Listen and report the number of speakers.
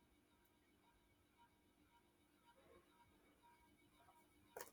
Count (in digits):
0